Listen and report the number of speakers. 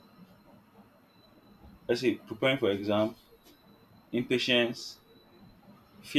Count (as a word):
one